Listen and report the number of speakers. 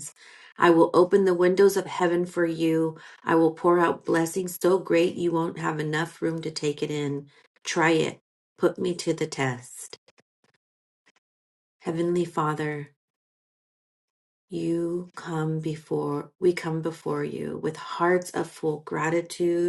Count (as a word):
one